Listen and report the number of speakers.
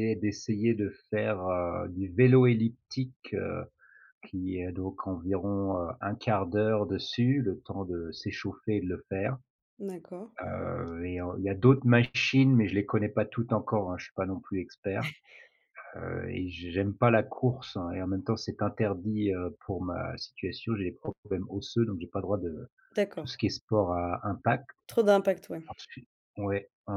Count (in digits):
2